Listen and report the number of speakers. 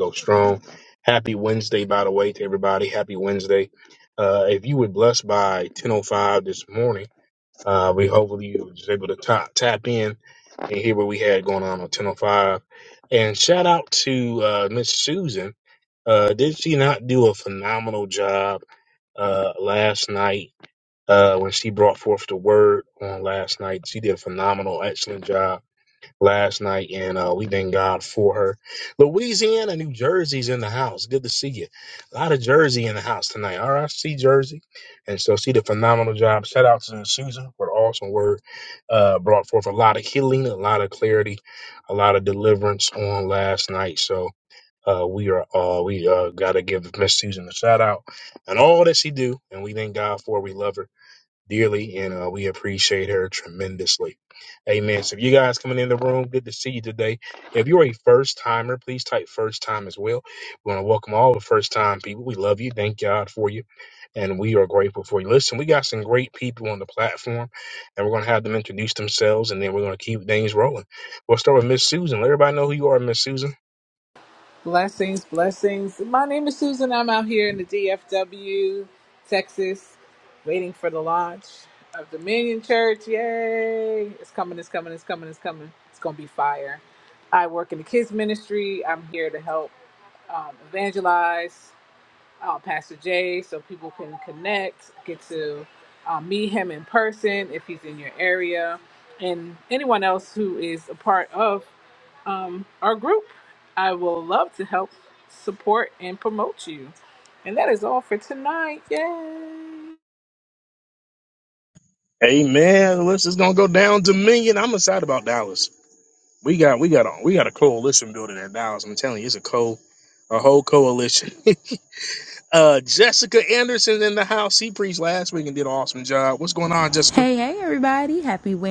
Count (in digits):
3